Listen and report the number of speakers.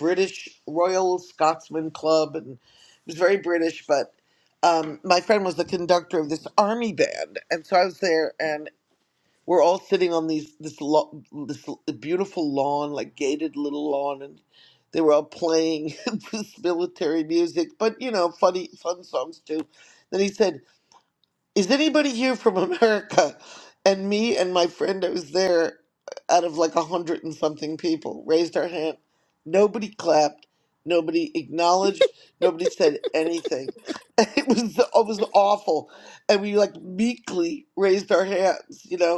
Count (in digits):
1